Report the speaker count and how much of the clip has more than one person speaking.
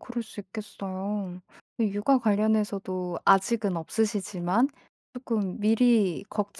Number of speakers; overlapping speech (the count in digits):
1, no overlap